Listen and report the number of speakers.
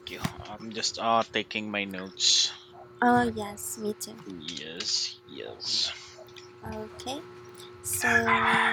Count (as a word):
two